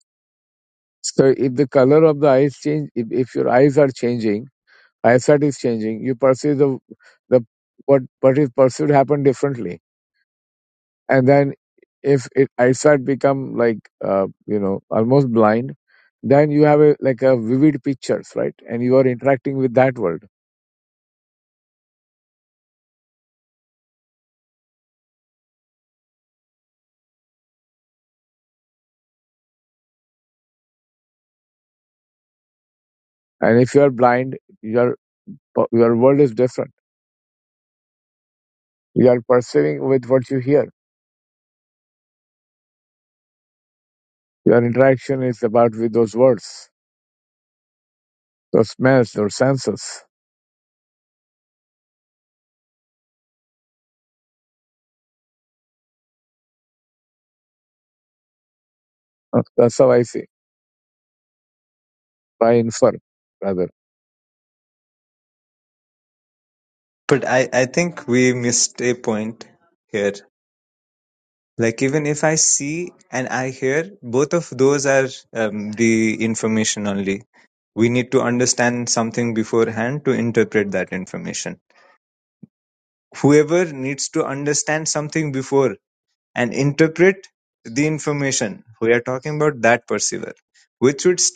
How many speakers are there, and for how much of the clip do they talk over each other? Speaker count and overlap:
two, no overlap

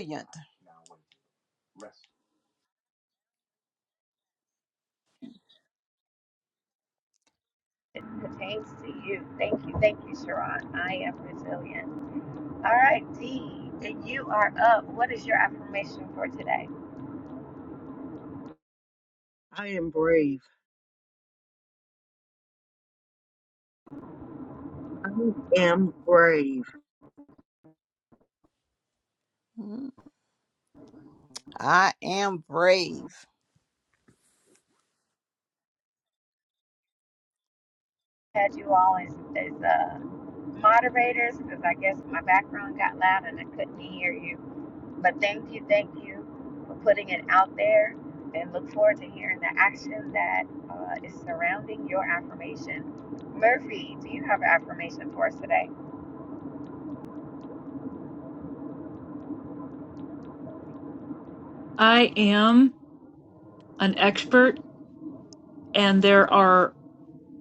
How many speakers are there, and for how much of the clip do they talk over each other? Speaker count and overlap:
four, no overlap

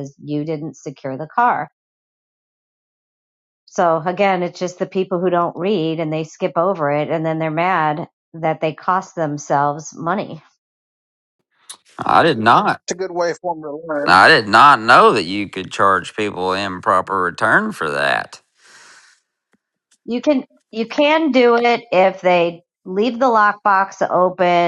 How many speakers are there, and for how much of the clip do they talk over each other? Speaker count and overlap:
three, about 1%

